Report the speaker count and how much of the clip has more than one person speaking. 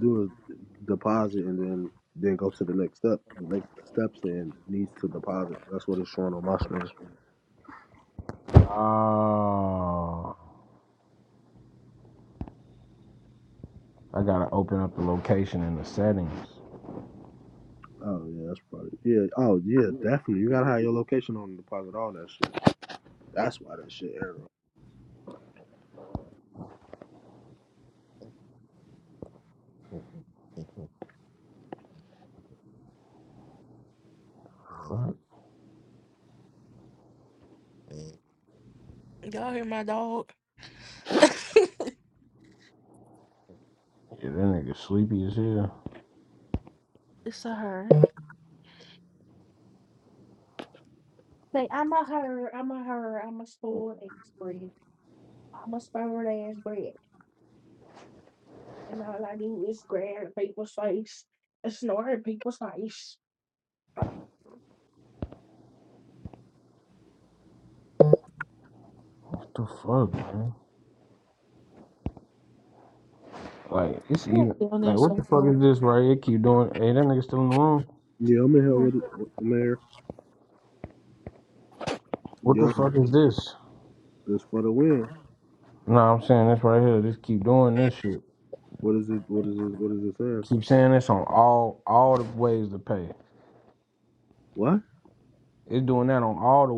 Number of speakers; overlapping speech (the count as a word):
three, about 2%